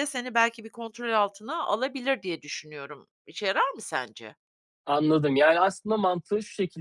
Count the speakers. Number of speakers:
2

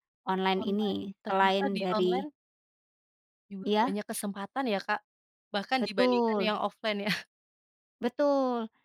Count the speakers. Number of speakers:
2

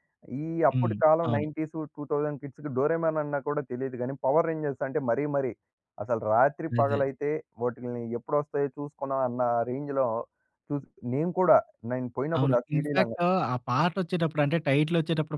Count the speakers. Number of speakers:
2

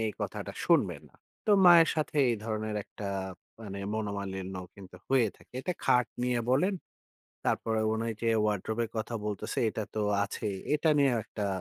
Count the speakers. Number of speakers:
1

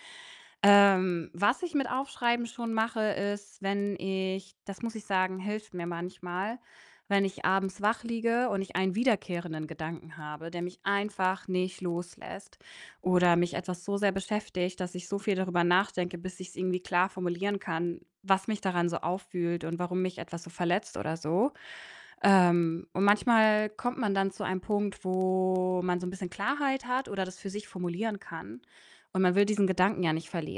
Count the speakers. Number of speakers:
1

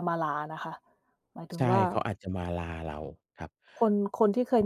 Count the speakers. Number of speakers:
2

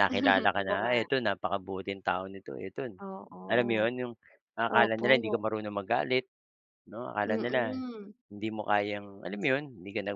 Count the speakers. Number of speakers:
2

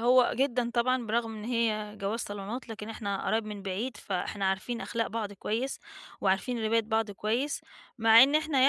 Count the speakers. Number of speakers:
1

